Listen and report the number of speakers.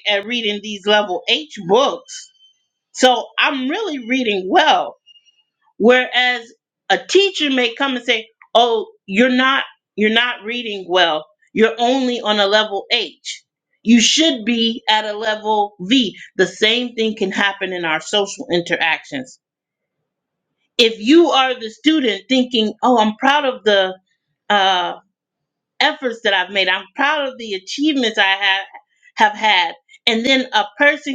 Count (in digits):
1